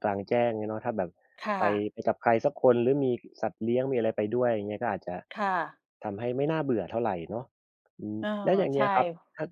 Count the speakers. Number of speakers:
2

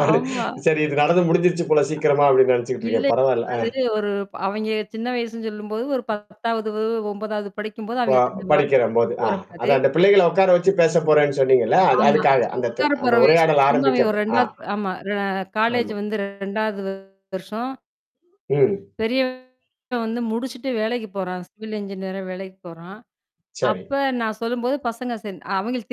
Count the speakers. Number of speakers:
2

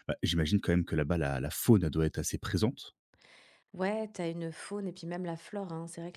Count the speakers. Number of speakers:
2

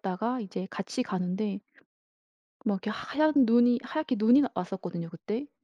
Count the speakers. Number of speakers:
1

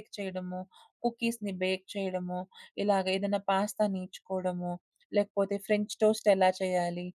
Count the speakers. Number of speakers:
1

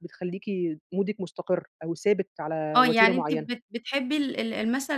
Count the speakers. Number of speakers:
2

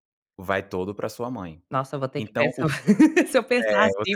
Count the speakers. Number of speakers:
2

